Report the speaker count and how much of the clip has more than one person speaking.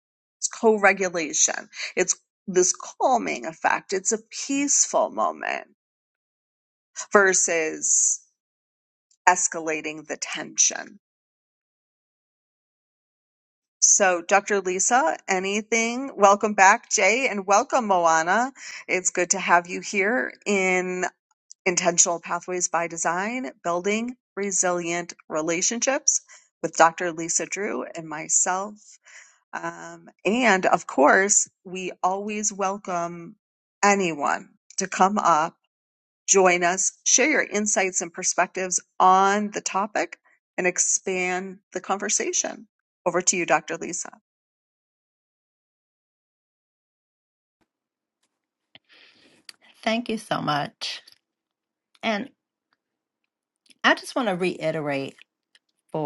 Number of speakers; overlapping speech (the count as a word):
two, no overlap